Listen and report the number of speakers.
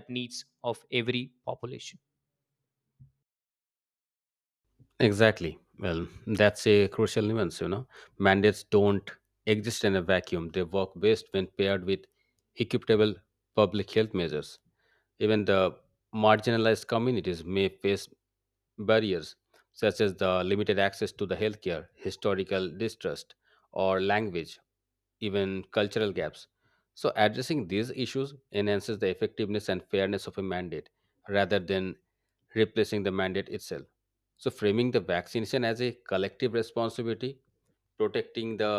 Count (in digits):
2